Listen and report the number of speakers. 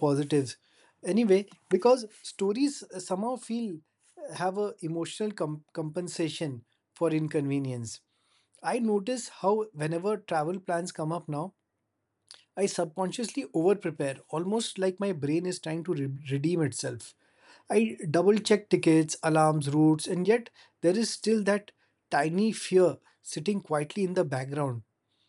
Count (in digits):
1